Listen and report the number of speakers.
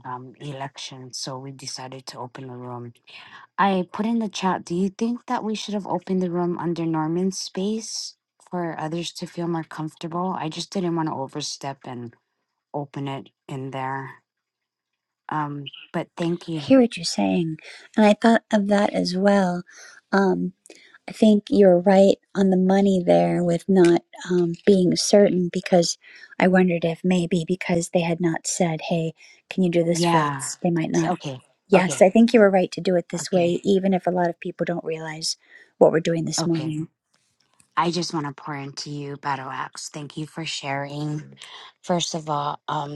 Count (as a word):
two